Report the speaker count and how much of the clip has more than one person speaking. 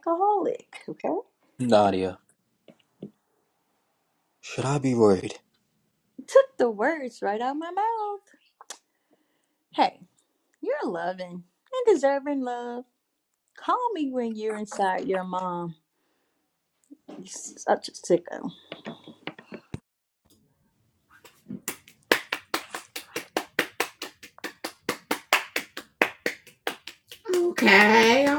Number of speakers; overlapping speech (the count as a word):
three, no overlap